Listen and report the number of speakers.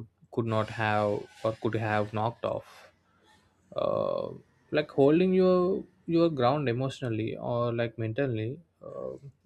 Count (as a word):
one